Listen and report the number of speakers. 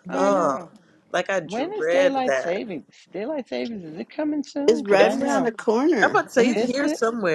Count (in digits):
3